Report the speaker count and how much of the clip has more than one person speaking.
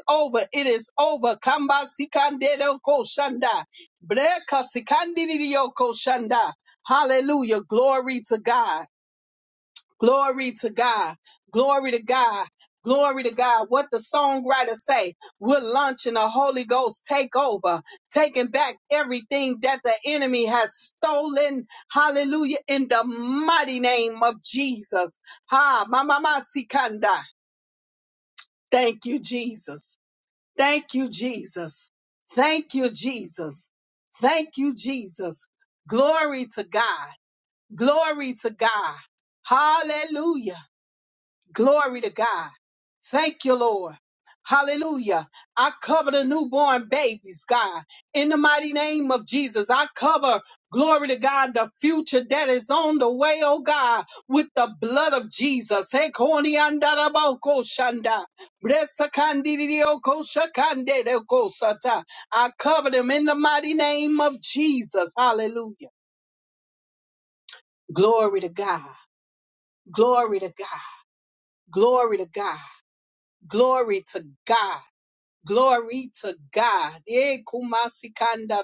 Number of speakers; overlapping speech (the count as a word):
one, no overlap